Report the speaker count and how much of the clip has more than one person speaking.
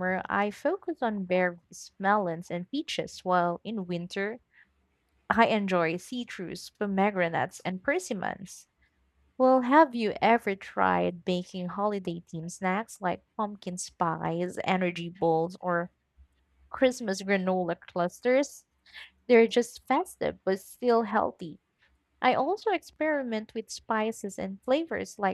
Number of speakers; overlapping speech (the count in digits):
1, no overlap